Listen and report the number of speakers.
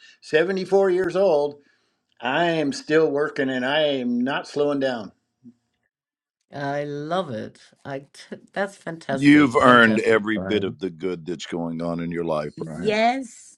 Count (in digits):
3